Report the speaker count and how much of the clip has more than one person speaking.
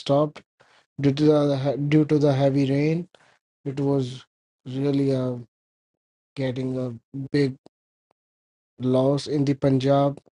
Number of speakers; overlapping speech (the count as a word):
one, no overlap